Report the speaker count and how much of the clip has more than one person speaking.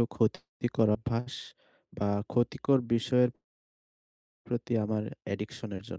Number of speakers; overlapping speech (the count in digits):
1, no overlap